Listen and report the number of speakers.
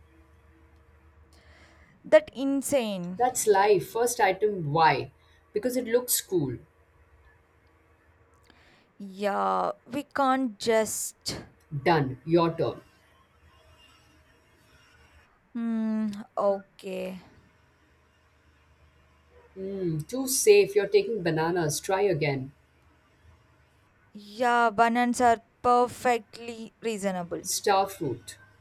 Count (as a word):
two